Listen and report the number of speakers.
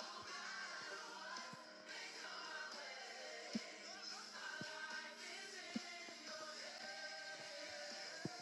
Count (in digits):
0